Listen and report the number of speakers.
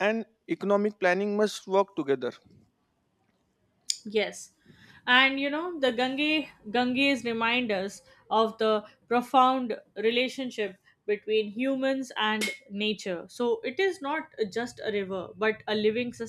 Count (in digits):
2